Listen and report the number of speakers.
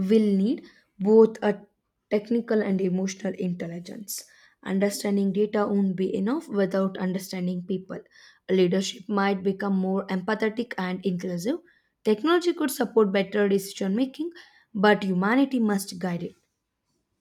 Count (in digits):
1